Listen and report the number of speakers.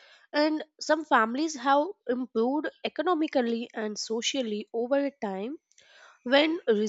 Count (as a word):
one